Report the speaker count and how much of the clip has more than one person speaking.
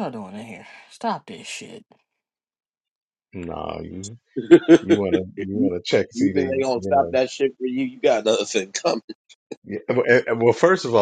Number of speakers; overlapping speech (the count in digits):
3, about 12%